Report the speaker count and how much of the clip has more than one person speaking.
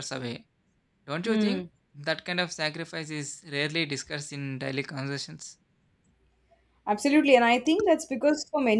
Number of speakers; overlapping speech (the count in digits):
2, about 4%